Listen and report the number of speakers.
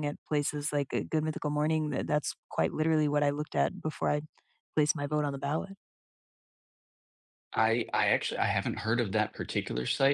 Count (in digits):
2